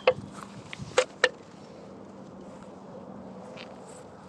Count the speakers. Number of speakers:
0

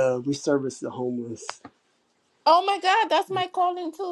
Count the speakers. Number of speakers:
2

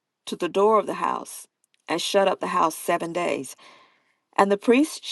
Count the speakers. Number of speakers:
1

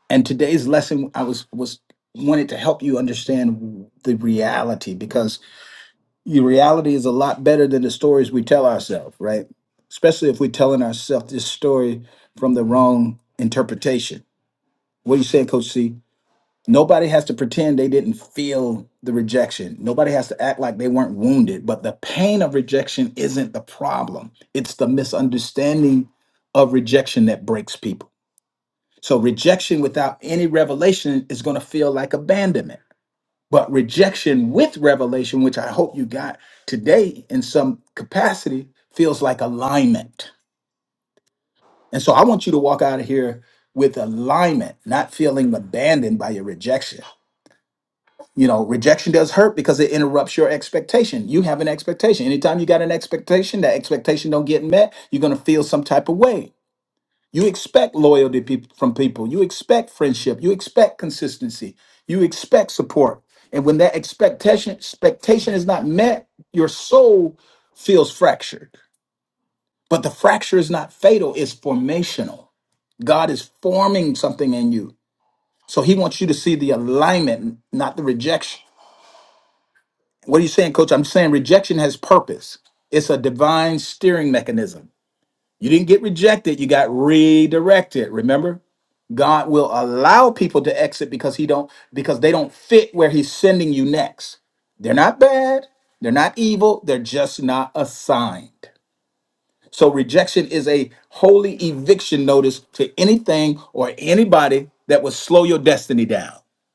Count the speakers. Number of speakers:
1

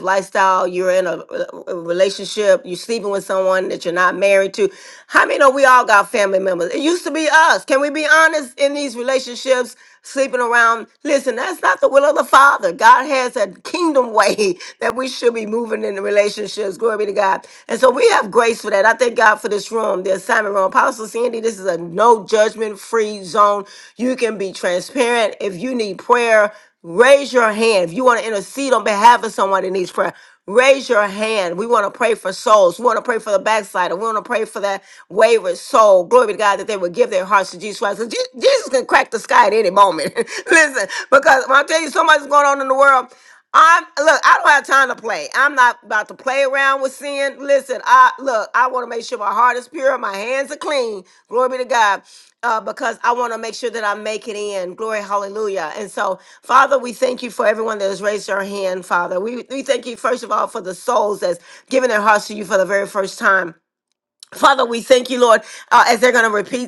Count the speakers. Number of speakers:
1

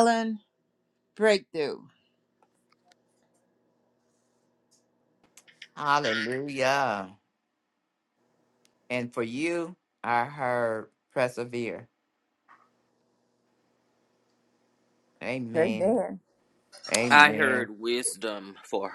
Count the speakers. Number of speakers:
3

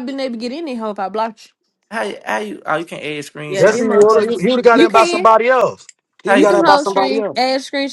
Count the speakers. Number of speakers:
3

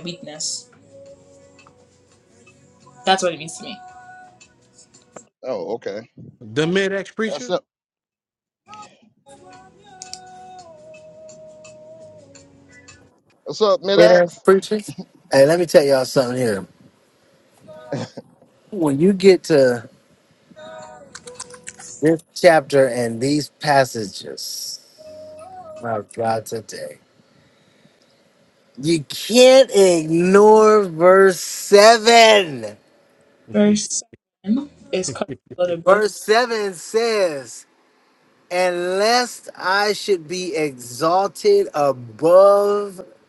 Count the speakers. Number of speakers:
4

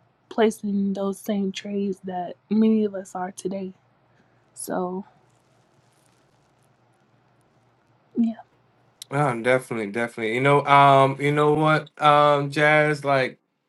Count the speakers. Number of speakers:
2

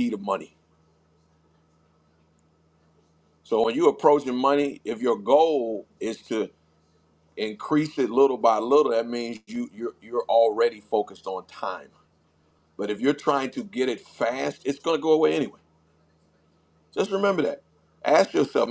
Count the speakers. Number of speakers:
1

